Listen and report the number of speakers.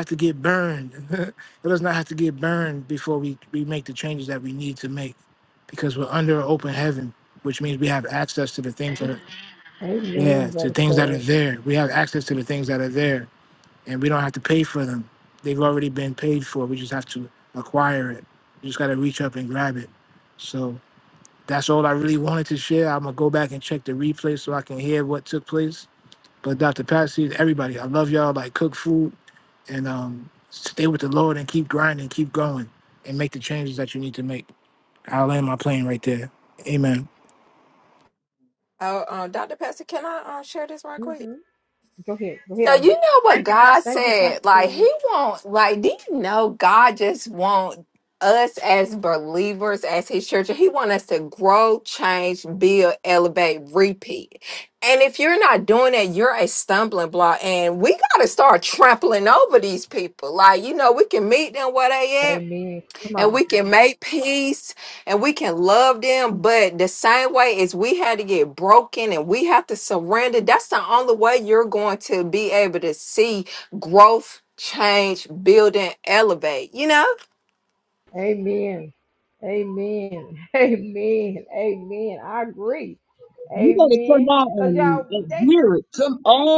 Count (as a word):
four